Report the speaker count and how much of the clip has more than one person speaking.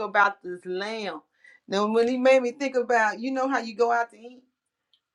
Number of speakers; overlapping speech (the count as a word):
one, no overlap